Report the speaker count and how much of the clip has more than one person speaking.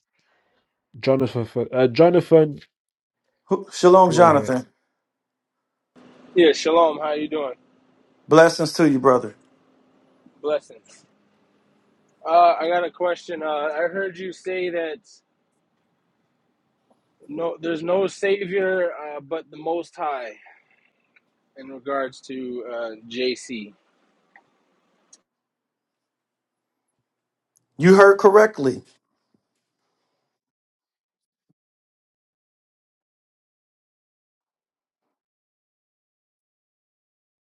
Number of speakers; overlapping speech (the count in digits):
3, about 1%